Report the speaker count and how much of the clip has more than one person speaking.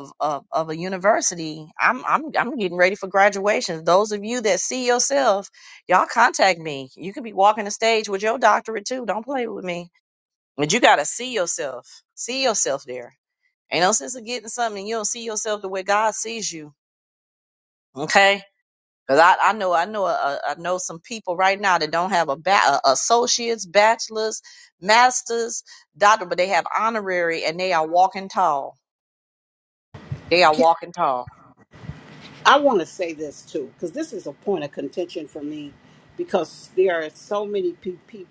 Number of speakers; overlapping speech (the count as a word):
two, no overlap